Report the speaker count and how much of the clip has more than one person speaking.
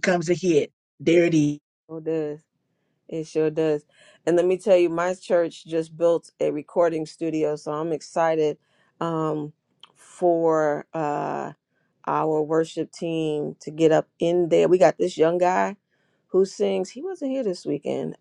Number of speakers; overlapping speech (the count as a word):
two, no overlap